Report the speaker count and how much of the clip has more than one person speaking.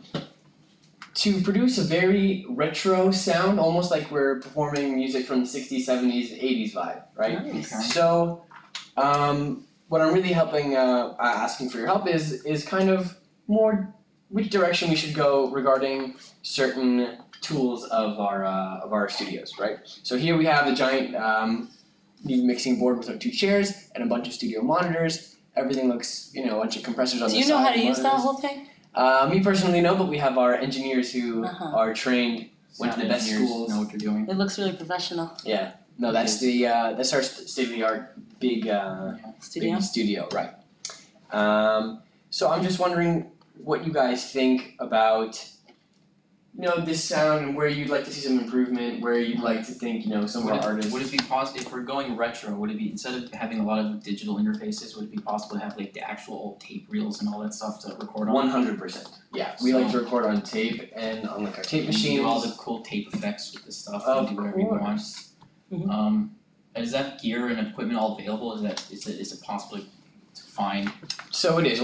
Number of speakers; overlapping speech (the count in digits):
3, about 10%